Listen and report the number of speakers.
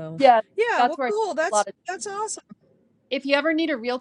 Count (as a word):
two